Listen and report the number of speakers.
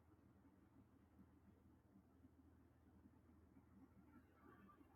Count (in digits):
0